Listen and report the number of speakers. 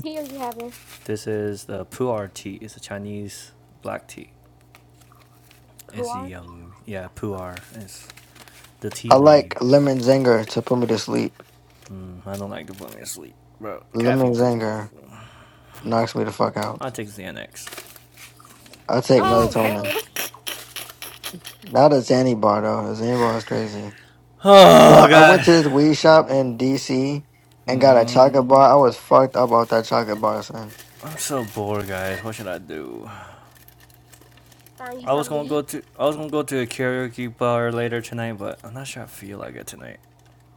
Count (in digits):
3